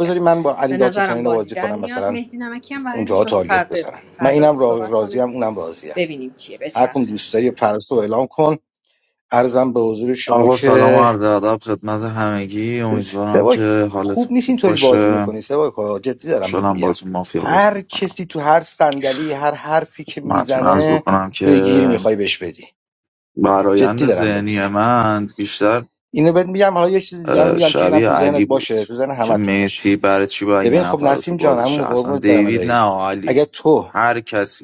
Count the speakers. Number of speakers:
three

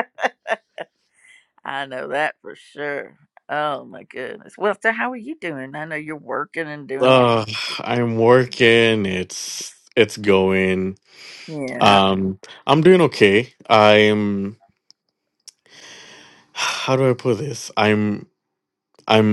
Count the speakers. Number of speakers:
two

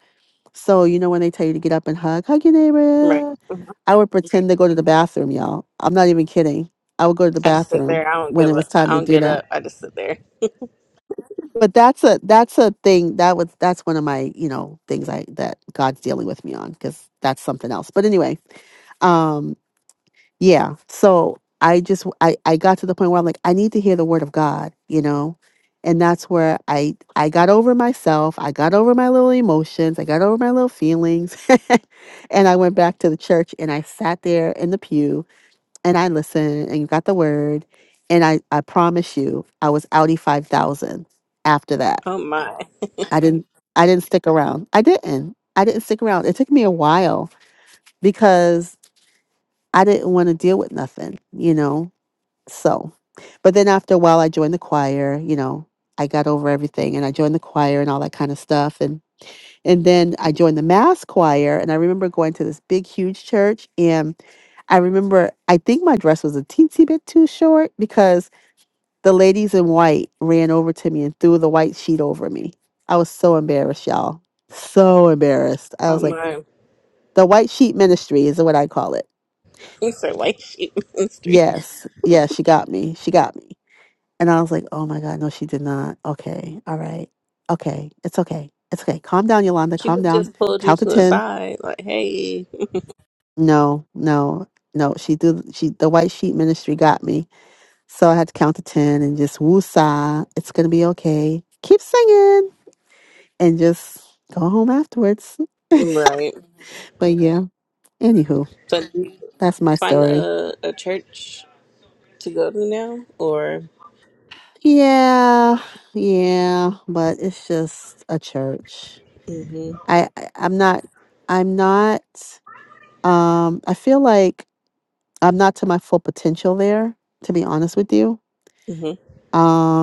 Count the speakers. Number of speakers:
two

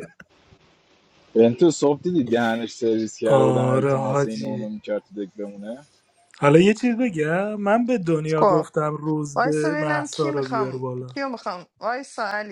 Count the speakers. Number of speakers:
three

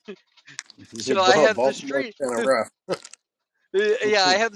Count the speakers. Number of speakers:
two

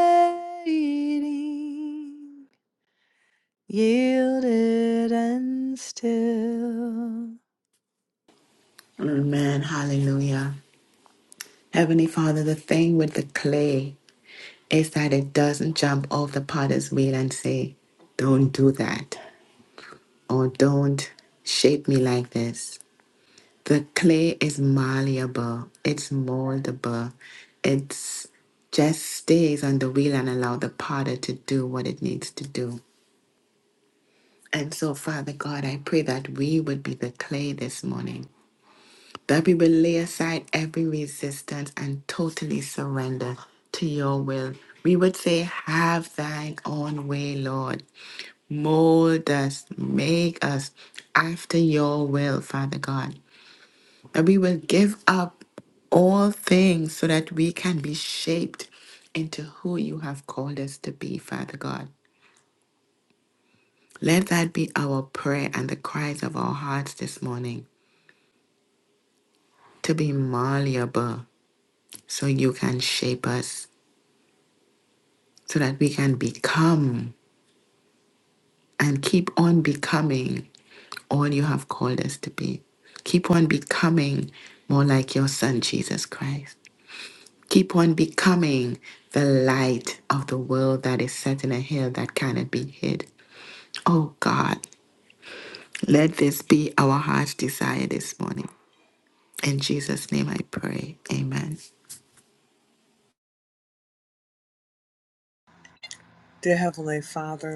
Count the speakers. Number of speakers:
three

